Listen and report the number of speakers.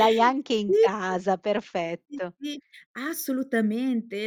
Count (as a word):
two